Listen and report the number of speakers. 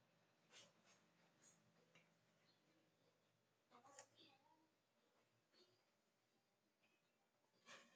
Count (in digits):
0